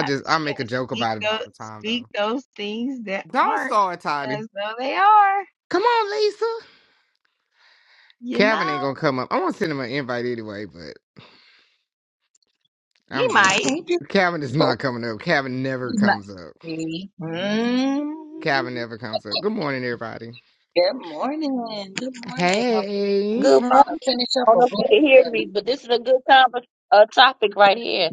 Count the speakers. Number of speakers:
4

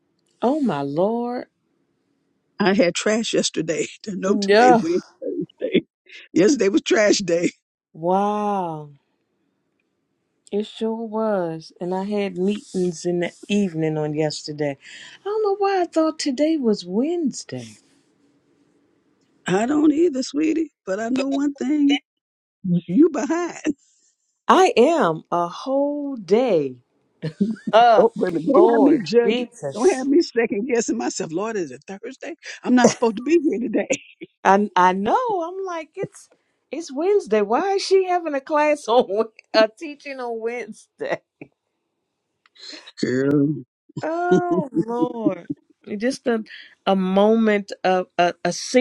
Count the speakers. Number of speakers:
2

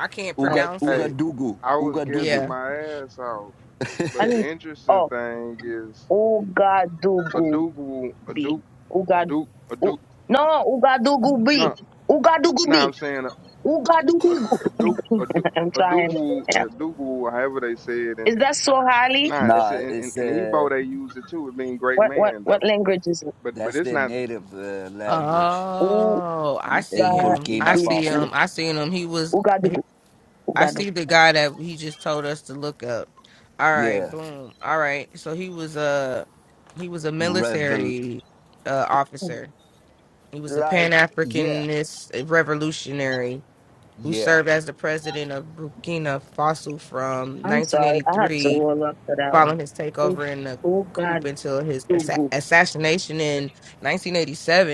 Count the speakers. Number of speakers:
4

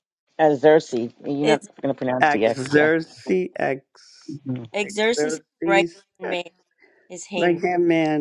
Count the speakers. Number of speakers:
3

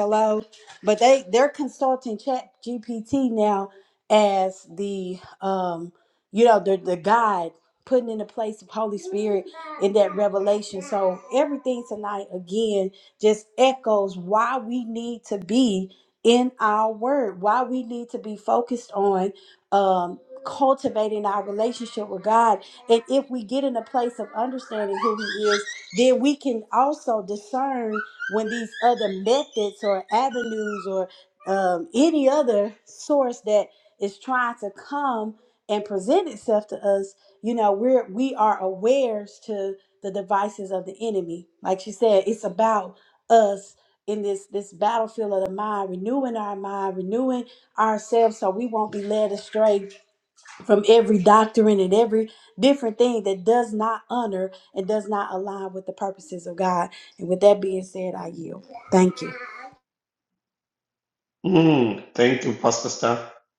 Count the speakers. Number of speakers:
2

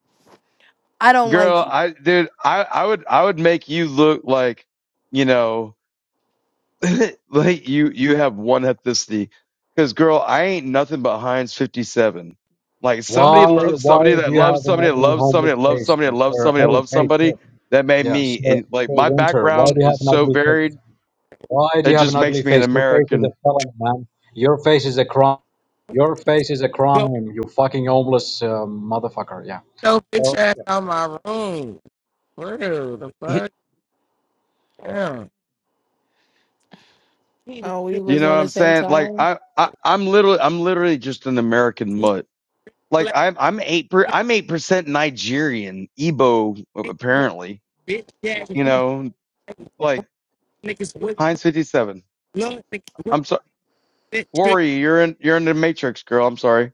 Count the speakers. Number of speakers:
4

